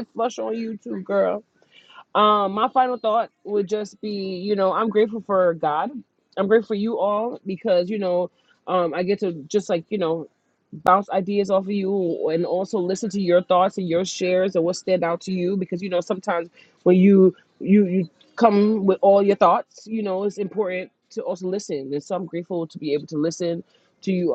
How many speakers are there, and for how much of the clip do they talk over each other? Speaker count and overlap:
1, no overlap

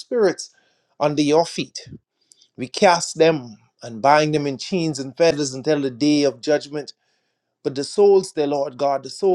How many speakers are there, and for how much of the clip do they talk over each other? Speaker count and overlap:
1, no overlap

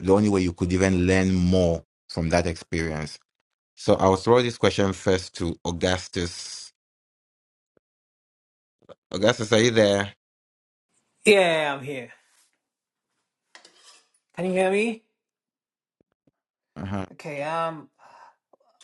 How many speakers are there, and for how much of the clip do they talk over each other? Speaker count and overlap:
2, no overlap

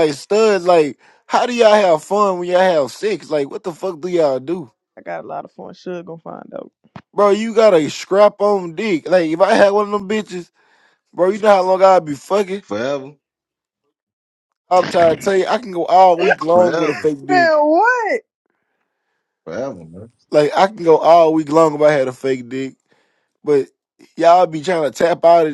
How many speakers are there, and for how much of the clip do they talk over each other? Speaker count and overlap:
3, about 3%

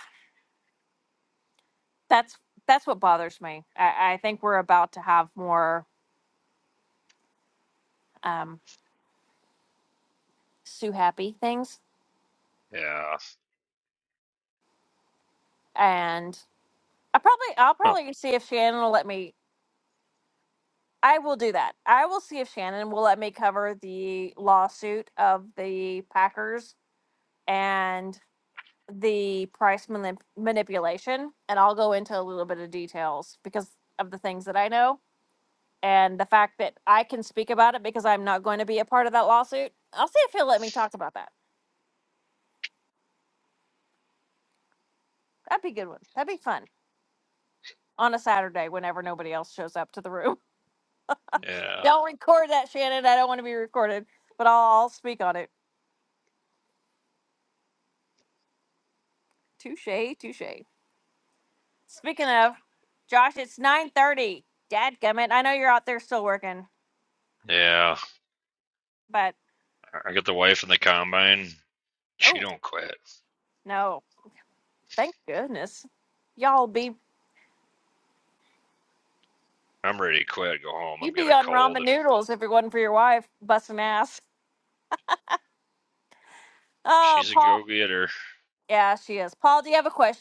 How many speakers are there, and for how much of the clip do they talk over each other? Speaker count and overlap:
2, about 2%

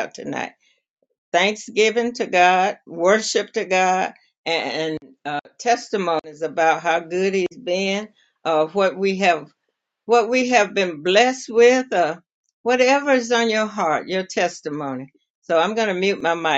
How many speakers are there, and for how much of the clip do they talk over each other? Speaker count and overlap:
1, no overlap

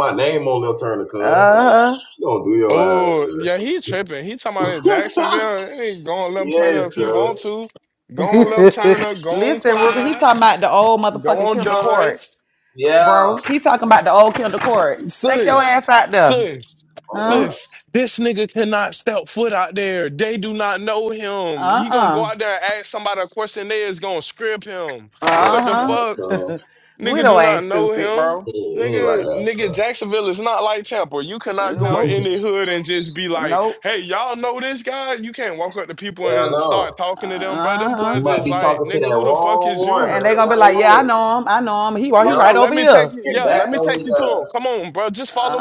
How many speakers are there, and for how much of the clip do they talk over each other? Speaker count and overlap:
3, about 43%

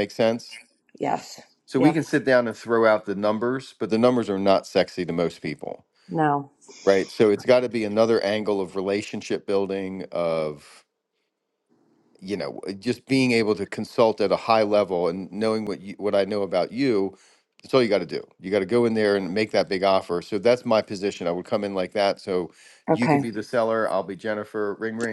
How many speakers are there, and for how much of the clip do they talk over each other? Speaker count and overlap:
2, about 2%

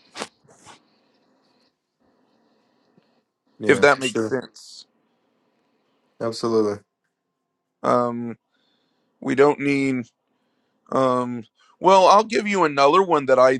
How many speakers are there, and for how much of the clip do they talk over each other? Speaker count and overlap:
2, about 4%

